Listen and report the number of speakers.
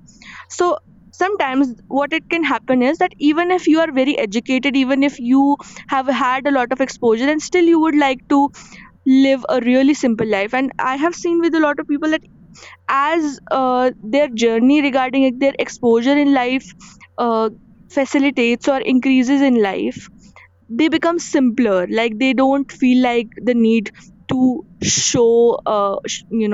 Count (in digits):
1